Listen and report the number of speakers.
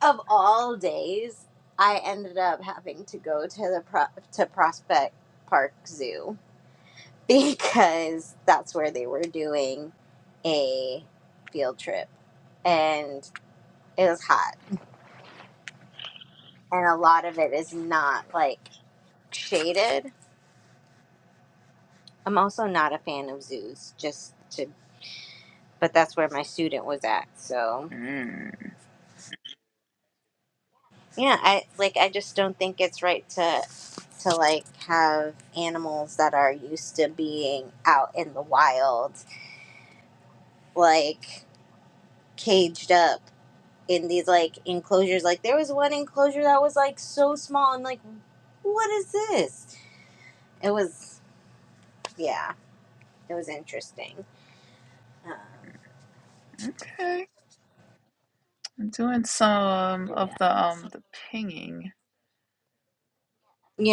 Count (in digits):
2